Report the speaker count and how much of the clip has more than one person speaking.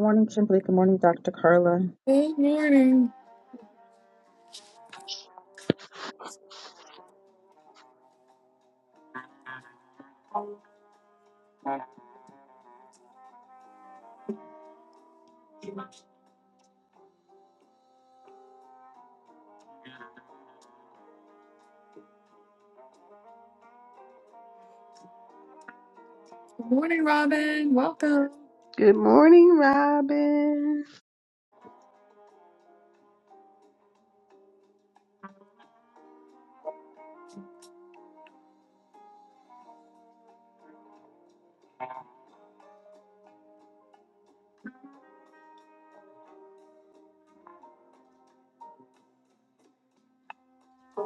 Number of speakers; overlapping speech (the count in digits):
3, no overlap